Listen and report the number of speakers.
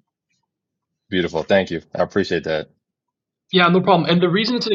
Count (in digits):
2